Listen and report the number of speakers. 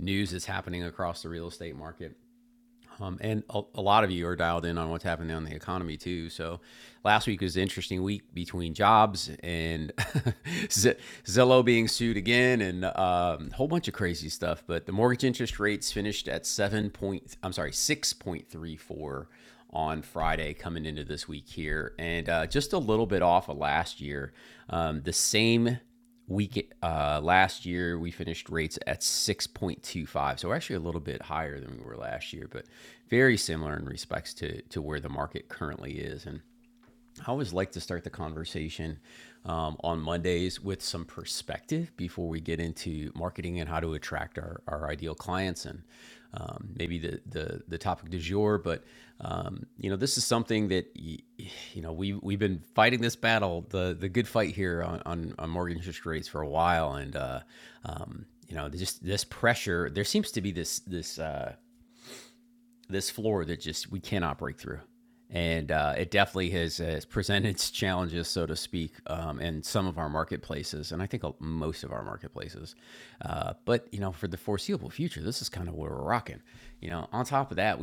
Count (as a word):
one